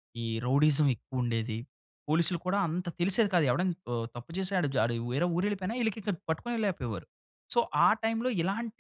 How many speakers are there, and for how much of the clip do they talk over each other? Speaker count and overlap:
one, no overlap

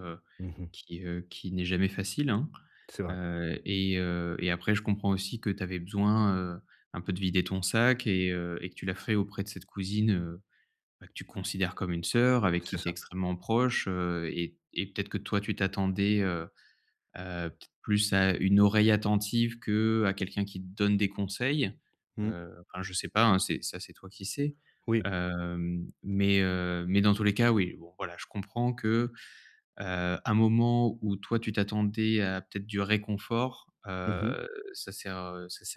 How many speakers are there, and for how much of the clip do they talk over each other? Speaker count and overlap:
two, about 3%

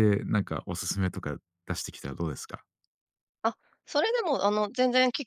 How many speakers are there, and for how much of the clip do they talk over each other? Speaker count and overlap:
two, no overlap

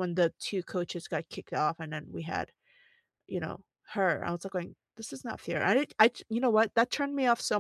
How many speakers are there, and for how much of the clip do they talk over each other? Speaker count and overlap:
one, no overlap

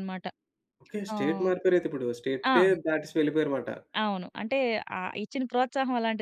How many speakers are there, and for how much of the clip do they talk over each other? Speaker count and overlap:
two, about 9%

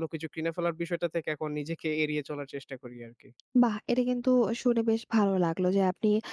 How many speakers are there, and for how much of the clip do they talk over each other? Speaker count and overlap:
two, no overlap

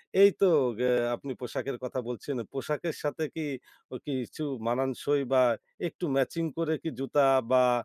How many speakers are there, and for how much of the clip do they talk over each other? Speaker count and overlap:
one, no overlap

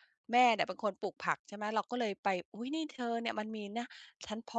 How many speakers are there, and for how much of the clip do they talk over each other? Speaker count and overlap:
one, no overlap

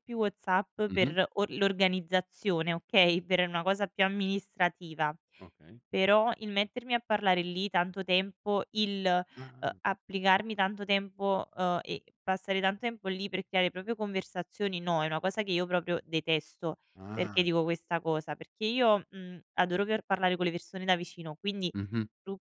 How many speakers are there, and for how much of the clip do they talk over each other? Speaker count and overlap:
two, about 2%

